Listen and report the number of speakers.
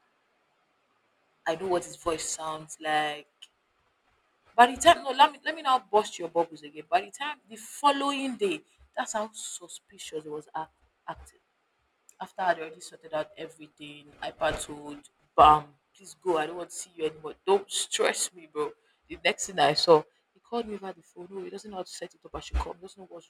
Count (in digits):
1